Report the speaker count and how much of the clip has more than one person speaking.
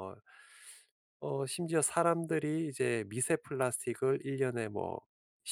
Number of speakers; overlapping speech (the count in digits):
1, no overlap